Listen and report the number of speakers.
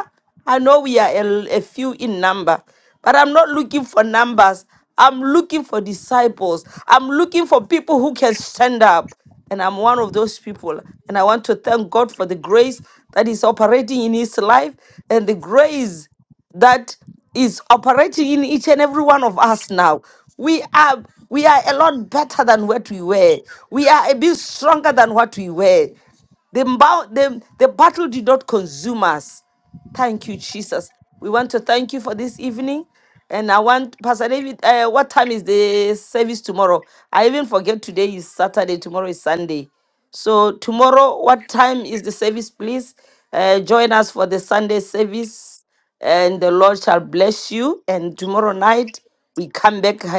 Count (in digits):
1